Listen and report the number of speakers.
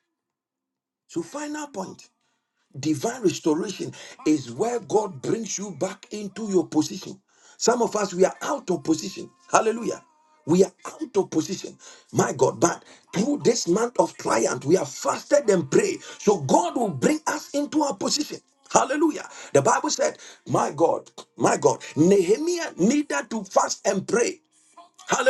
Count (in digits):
1